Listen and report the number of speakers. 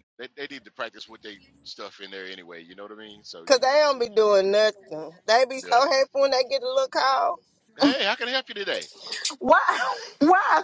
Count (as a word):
three